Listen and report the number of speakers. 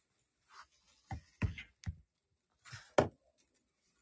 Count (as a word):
zero